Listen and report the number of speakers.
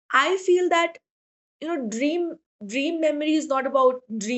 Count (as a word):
one